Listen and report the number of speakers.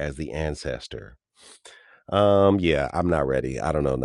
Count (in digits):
1